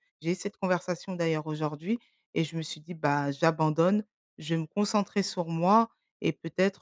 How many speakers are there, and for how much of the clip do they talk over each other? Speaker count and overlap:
1, no overlap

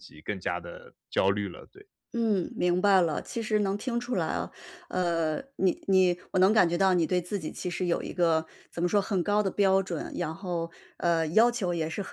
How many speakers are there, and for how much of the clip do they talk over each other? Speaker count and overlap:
2, no overlap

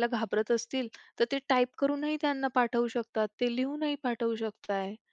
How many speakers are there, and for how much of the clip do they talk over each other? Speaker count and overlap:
1, no overlap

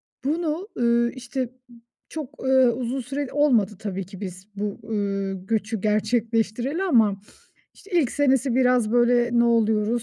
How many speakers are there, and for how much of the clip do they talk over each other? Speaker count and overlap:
1, no overlap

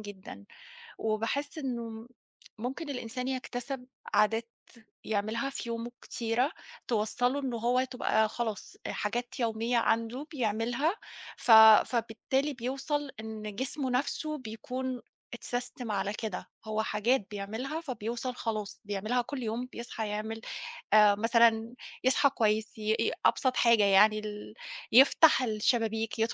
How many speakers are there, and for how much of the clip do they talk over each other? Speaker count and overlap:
1, no overlap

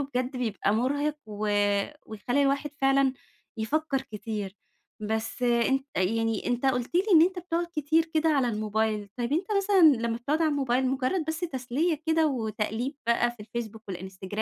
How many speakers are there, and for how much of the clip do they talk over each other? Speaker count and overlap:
1, no overlap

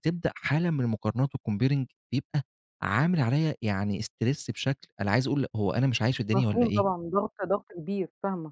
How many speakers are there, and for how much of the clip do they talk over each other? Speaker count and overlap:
2, about 6%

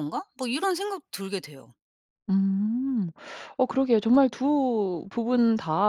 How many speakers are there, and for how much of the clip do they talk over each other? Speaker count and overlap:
2, no overlap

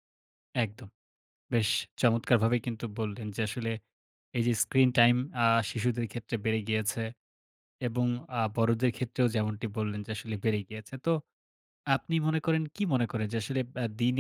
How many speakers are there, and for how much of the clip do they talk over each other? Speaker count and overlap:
1, no overlap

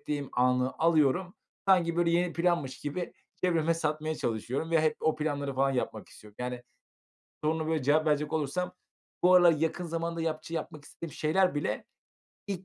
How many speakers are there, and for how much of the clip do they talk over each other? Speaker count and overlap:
1, no overlap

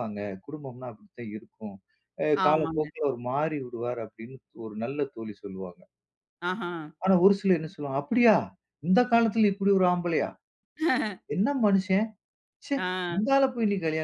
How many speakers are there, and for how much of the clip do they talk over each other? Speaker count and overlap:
2, about 4%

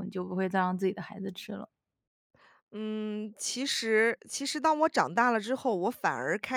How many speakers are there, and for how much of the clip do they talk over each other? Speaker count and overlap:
2, no overlap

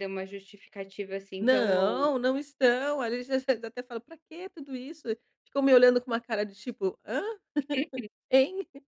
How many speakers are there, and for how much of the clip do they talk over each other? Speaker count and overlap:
2, about 8%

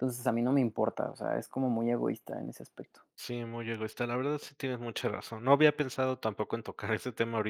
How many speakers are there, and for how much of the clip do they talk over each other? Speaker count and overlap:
2, no overlap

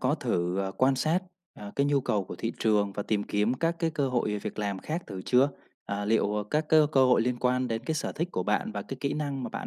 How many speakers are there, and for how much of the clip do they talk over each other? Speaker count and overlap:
1, no overlap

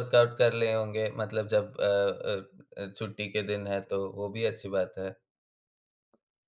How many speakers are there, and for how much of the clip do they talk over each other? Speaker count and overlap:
1, no overlap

